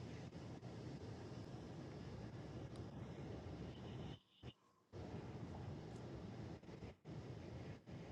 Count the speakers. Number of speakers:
0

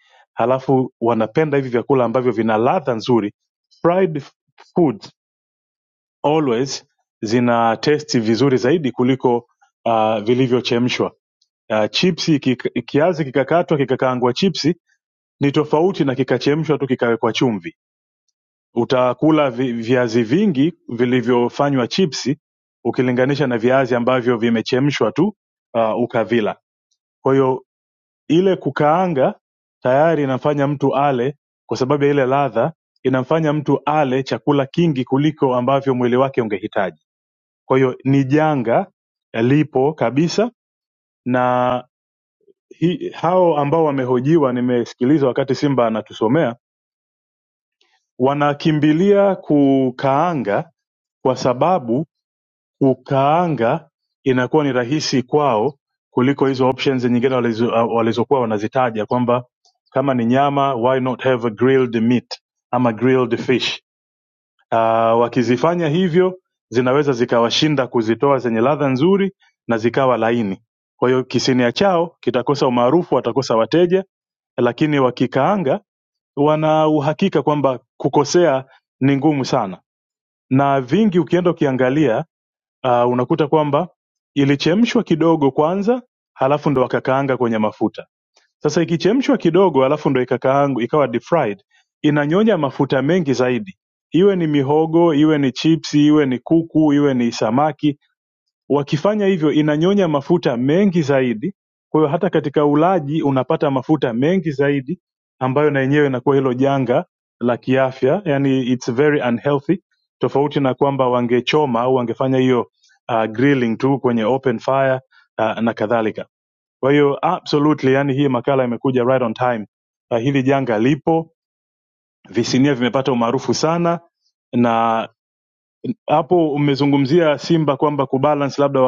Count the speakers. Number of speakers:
1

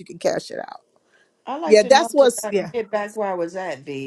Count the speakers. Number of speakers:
2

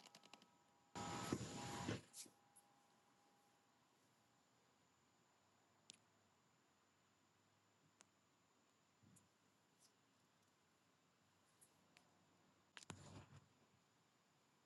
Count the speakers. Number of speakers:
0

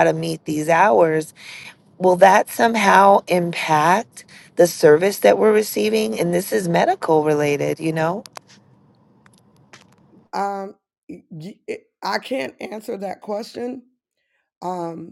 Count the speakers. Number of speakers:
2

